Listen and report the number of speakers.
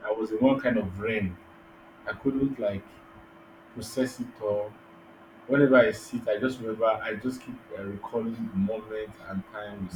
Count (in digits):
1